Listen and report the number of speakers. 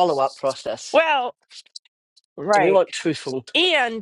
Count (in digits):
2